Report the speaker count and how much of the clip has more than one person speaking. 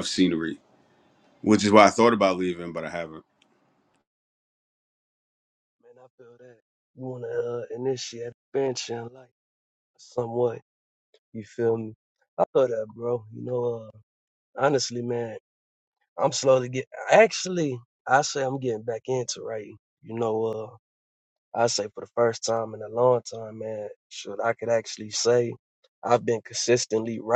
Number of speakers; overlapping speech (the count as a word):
two, no overlap